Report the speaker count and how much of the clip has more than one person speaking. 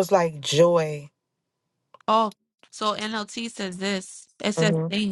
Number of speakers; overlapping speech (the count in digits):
2, about 6%